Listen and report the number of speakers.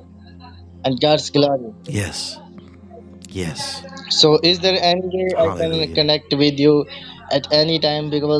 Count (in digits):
2